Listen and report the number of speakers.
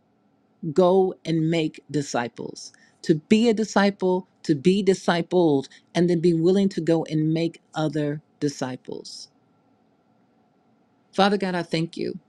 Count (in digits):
1